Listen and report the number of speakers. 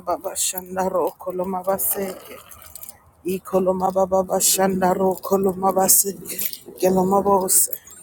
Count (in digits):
1